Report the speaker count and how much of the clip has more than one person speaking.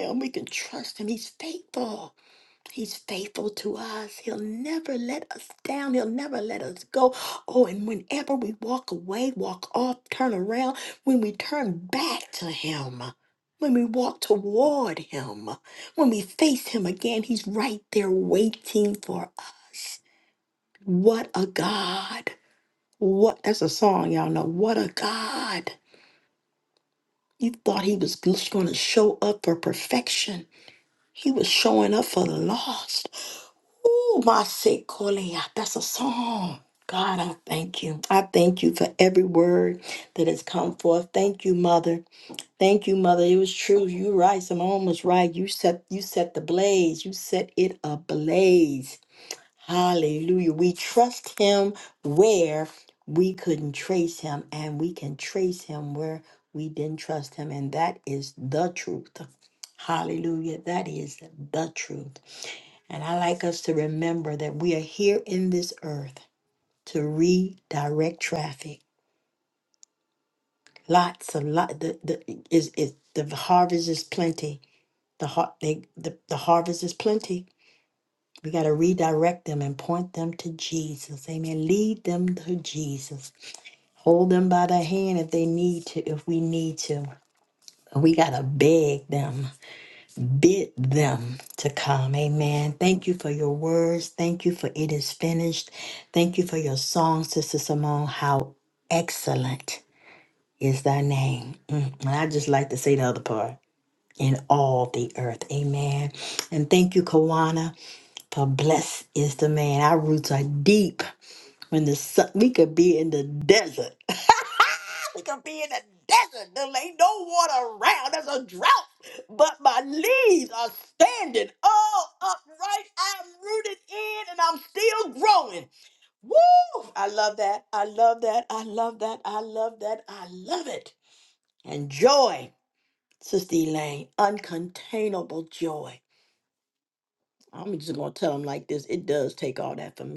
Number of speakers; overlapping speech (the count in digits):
1, no overlap